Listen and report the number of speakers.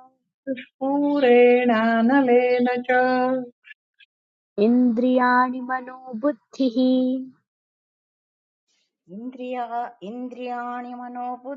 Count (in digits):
3